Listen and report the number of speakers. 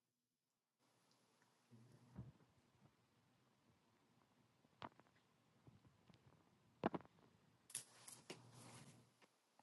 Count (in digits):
0